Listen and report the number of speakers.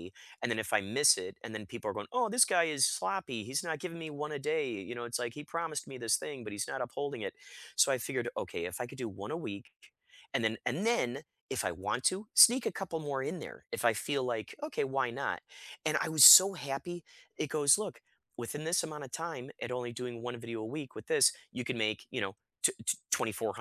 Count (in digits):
1